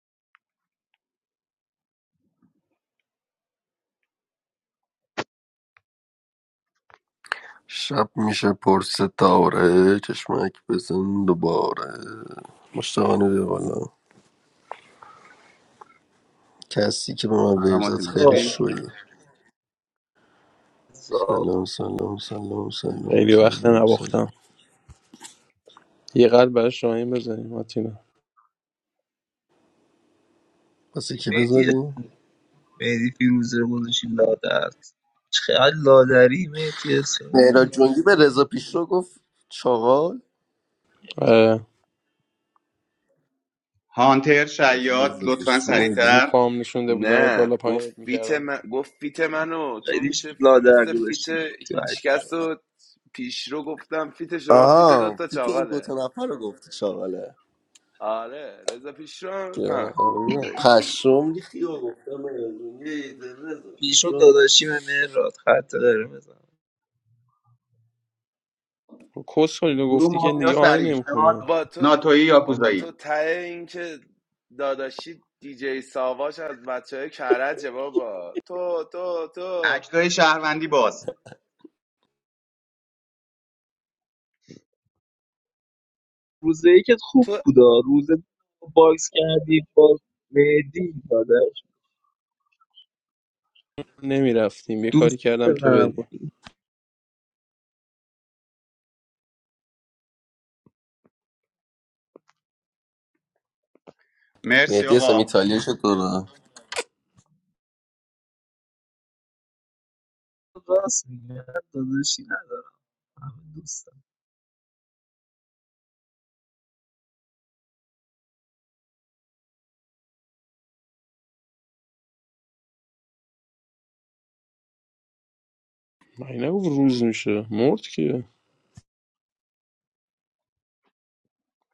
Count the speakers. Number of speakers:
5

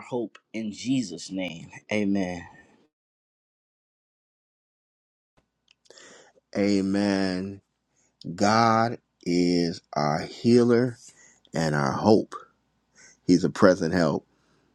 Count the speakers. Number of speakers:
2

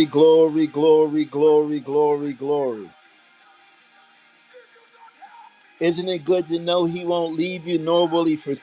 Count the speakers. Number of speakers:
1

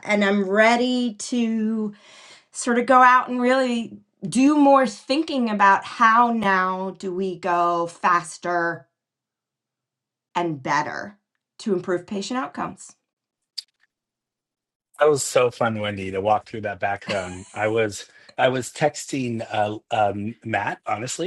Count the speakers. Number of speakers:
2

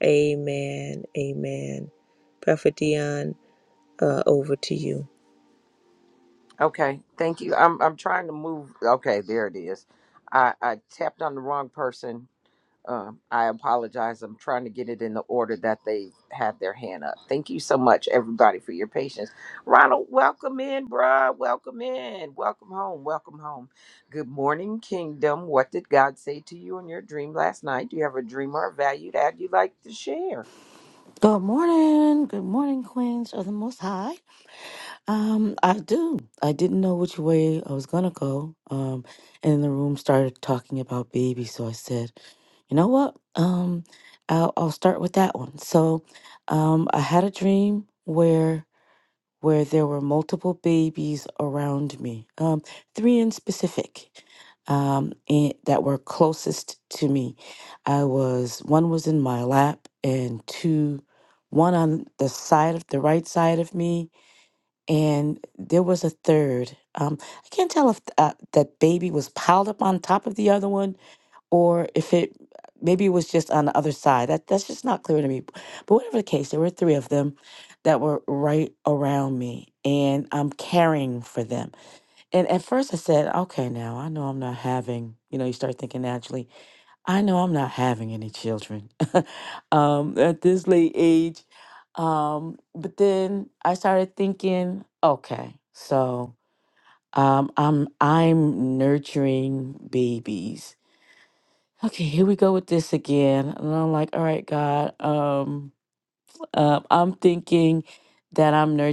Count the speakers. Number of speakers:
3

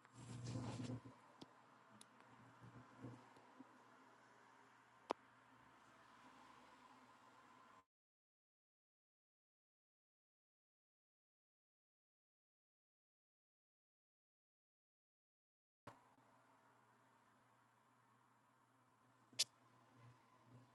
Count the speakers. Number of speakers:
0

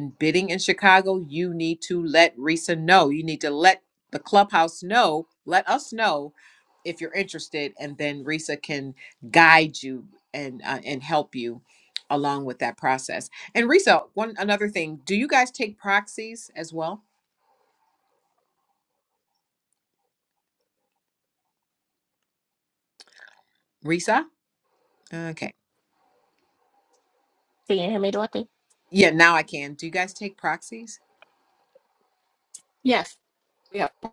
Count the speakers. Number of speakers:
2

